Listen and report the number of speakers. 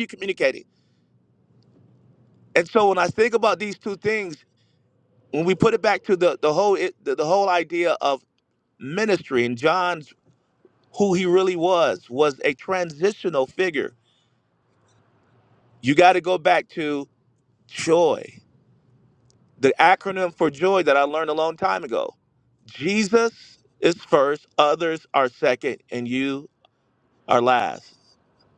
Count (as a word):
one